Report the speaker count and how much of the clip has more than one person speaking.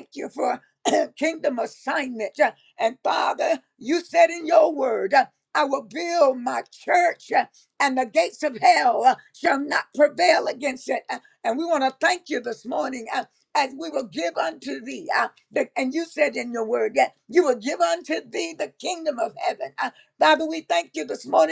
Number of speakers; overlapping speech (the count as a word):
one, no overlap